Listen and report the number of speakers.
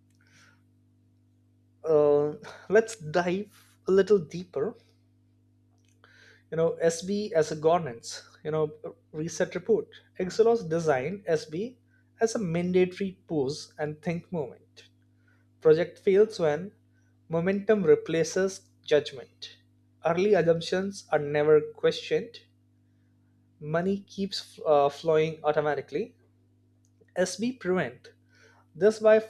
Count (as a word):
one